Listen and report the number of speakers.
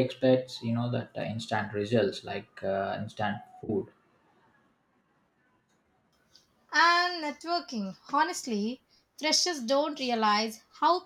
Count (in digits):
2